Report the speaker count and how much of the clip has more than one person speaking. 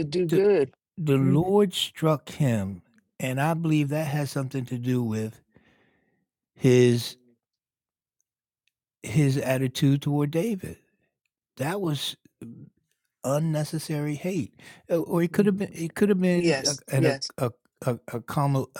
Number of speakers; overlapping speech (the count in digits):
2, about 5%